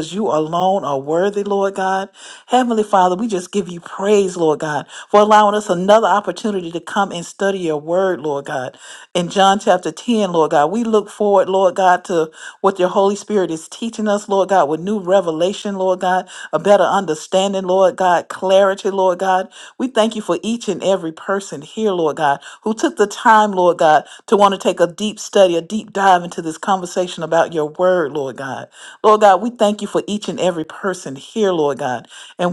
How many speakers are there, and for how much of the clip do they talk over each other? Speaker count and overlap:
one, no overlap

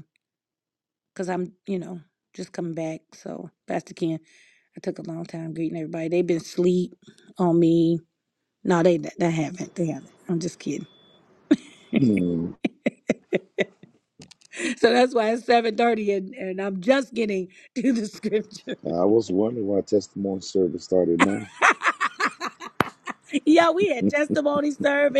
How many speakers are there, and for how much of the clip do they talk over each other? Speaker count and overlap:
two, no overlap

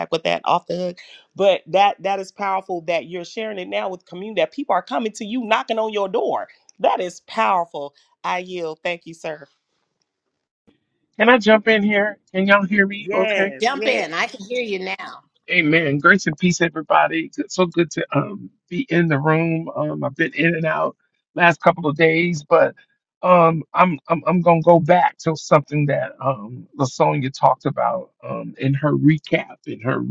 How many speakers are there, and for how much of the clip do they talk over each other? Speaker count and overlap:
three, about 3%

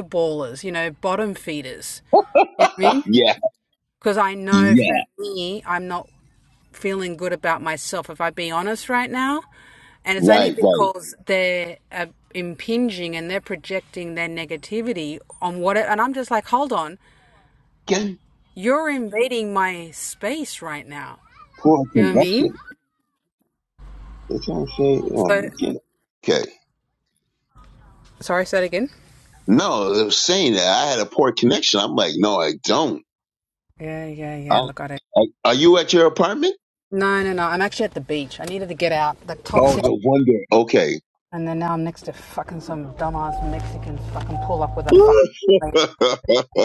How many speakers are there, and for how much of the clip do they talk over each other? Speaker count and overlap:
two, about 6%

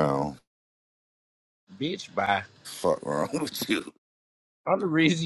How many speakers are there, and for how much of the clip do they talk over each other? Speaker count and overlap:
two, no overlap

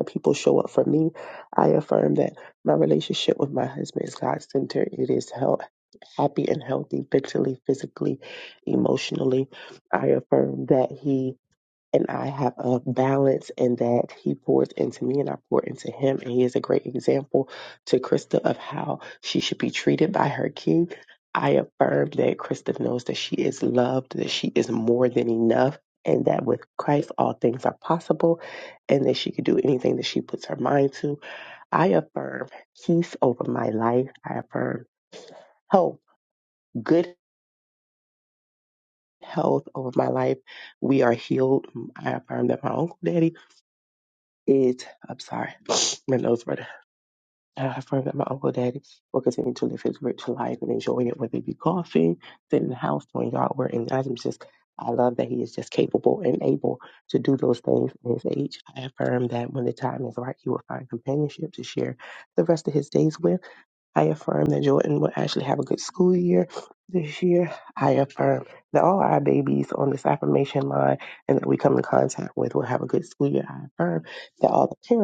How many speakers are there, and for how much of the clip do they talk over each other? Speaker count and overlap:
one, no overlap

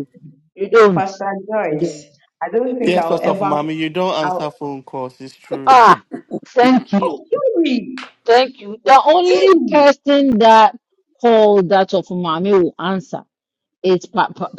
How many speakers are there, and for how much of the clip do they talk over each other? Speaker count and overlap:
three, about 15%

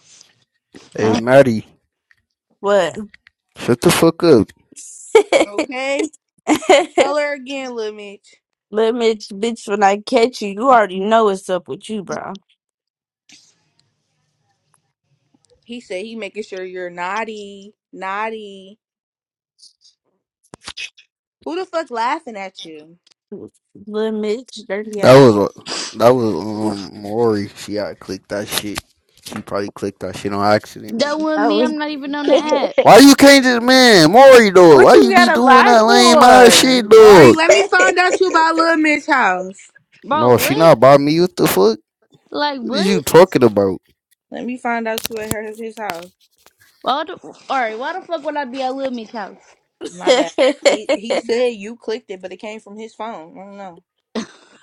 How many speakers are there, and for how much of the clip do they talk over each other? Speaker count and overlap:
four, about 7%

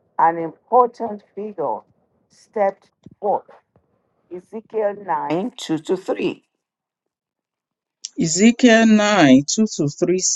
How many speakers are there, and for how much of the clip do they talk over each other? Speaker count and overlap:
two, no overlap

